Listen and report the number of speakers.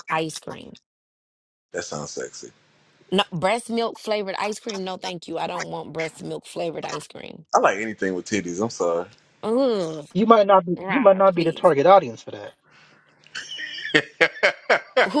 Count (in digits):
3